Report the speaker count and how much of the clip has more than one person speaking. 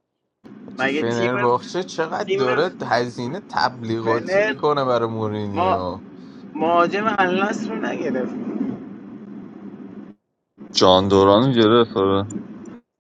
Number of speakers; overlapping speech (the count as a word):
three, about 14%